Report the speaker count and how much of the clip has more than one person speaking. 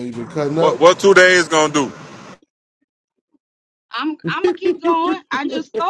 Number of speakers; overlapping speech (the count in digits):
3, about 9%